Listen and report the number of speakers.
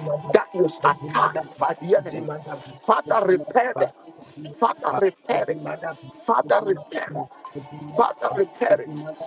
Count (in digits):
2